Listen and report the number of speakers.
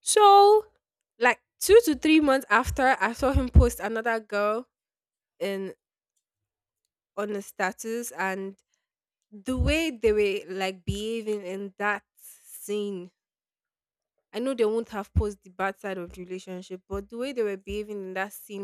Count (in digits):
1